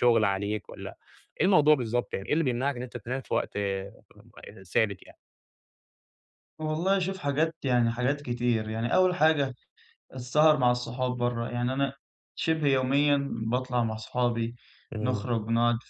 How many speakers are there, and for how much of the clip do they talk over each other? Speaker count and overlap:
two, about 1%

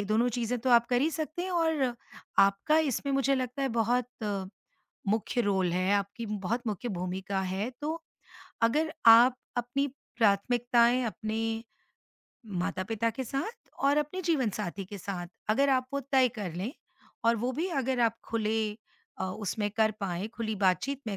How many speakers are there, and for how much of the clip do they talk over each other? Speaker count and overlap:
one, no overlap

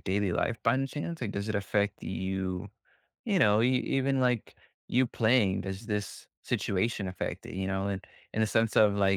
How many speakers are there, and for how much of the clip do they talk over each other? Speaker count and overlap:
one, no overlap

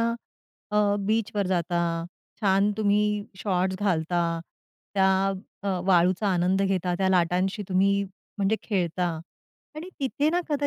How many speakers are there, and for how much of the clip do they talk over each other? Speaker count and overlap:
one, no overlap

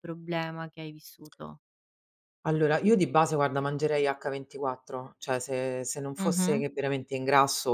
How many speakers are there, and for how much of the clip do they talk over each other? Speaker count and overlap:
two, about 6%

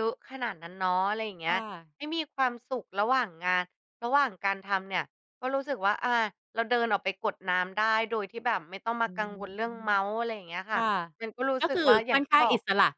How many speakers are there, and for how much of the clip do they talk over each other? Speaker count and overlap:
two, about 10%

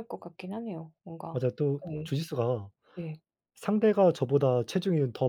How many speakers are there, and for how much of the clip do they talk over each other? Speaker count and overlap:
two, about 5%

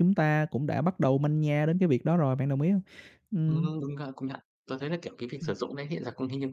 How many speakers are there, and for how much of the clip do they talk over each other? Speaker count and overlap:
two, about 4%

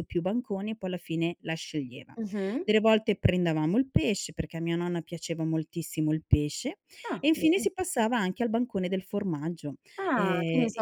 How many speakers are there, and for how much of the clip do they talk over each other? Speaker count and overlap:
two, about 11%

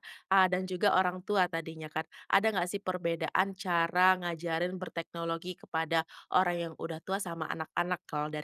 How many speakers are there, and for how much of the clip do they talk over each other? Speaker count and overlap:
one, no overlap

